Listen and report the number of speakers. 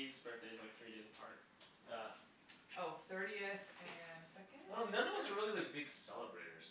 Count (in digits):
3